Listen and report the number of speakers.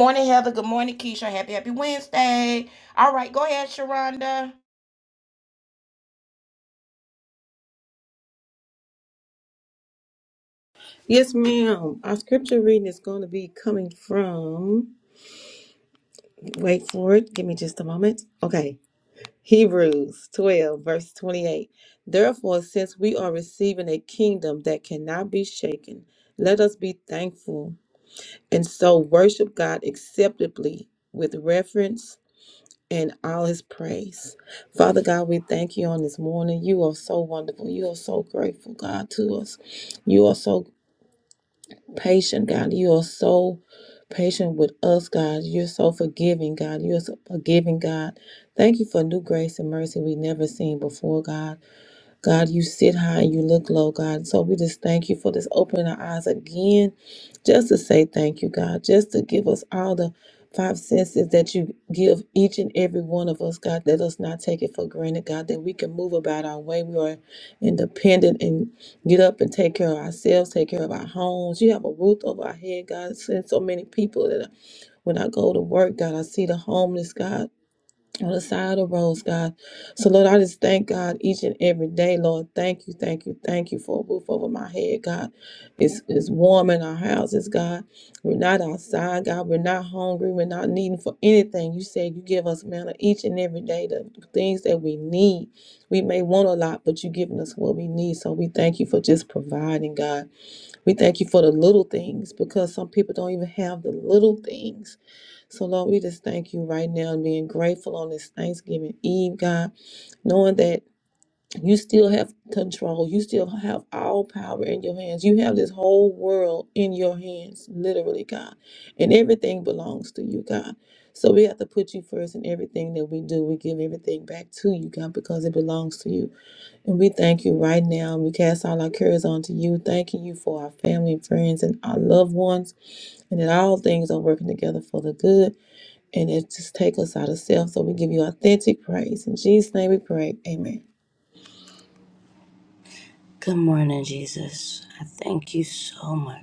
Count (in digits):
3